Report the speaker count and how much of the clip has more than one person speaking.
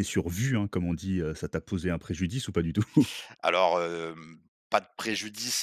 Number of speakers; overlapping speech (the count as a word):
two, no overlap